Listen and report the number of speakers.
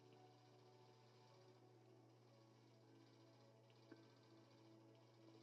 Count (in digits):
0